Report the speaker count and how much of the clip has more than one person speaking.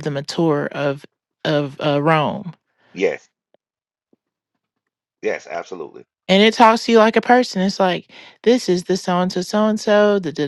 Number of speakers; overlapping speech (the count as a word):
two, no overlap